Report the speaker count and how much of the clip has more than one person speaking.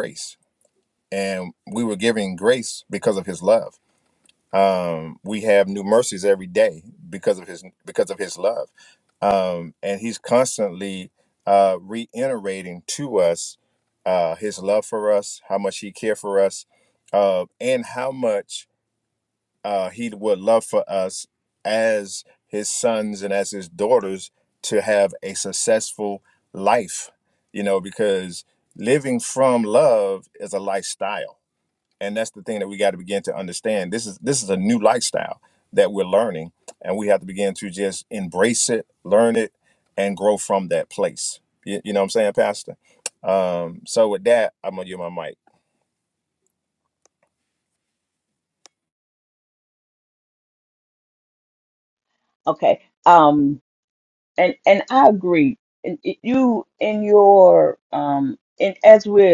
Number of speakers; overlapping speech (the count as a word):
two, no overlap